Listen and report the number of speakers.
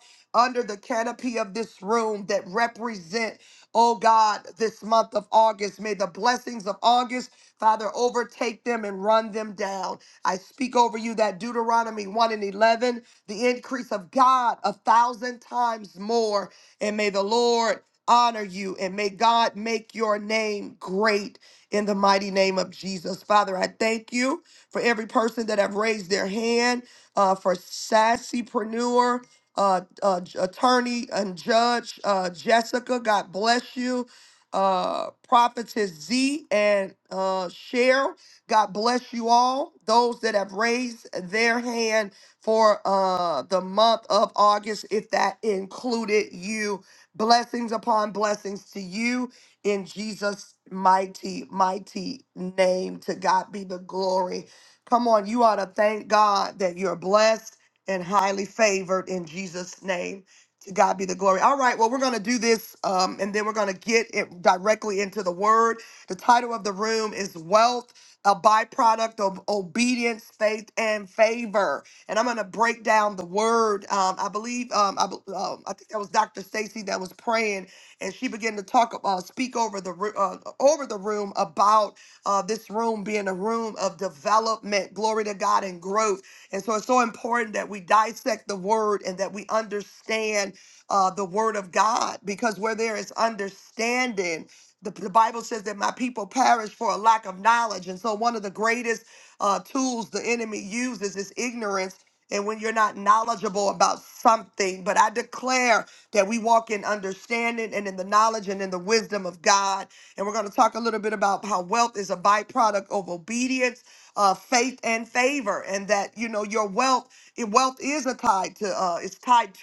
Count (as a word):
one